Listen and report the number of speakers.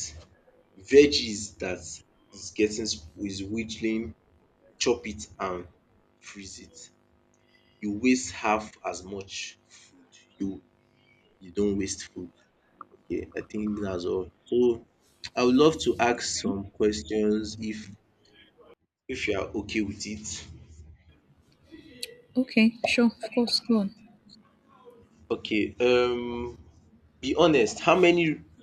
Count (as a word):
two